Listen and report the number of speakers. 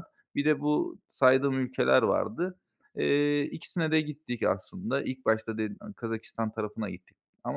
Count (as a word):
one